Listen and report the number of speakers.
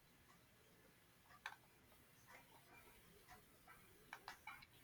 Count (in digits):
0